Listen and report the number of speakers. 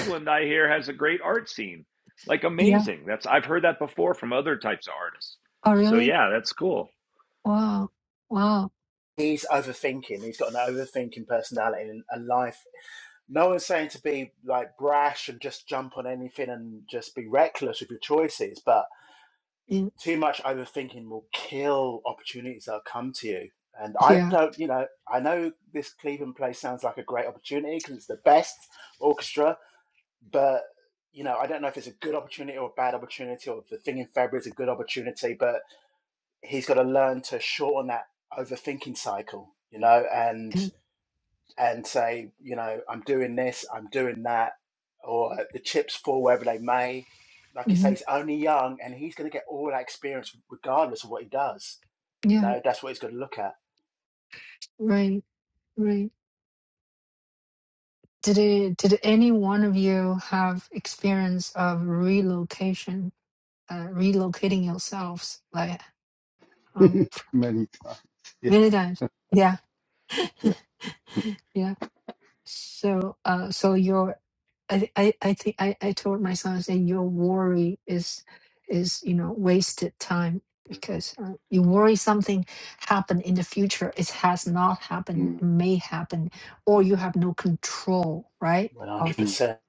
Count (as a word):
four